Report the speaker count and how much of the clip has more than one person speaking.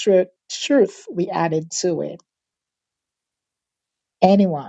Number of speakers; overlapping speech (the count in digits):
1, no overlap